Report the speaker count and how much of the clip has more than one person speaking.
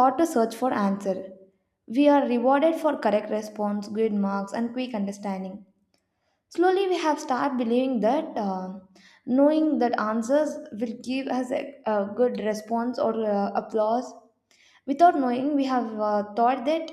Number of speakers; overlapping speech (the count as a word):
one, no overlap